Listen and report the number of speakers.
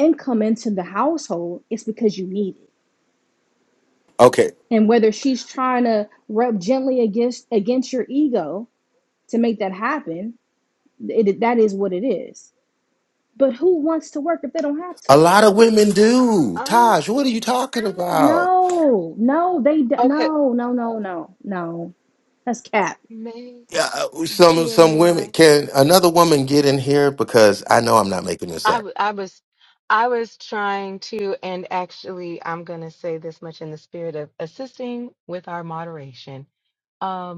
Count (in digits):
3